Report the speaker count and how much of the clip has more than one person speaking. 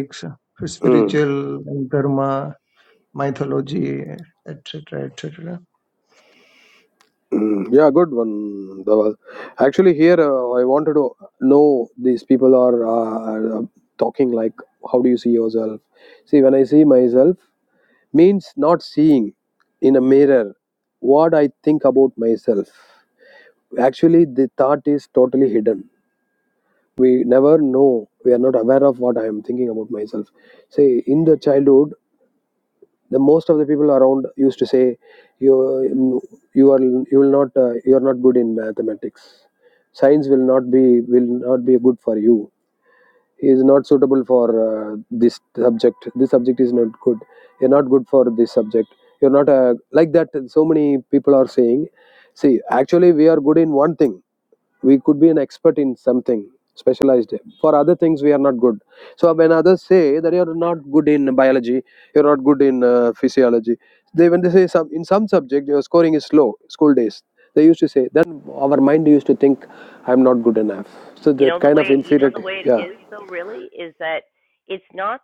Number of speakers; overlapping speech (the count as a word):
three, about 2%